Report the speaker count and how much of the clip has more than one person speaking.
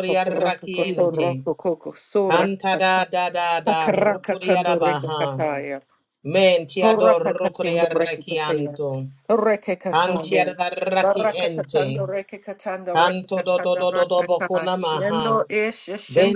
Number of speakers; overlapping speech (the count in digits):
2, about 61%